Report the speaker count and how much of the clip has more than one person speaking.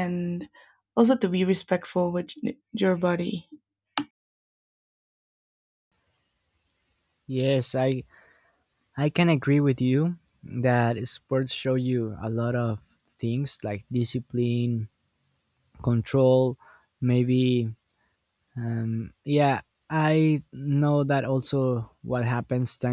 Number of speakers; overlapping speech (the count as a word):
two, no overlap